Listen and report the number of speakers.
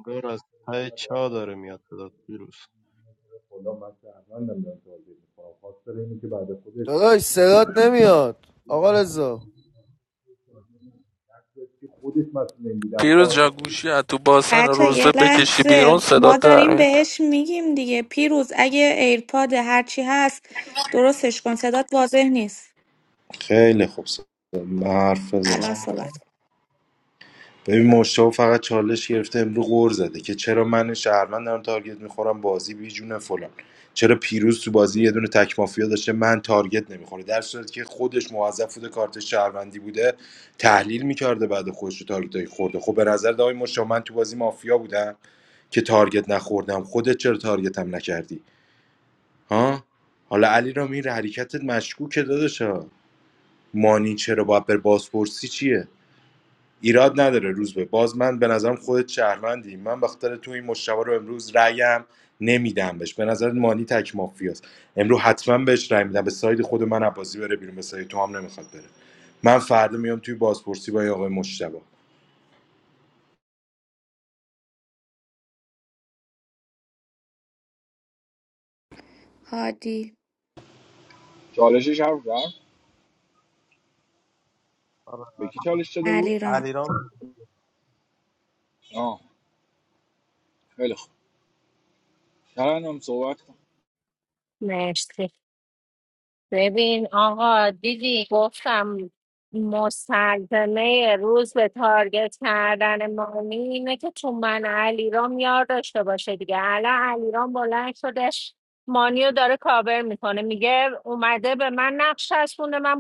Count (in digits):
7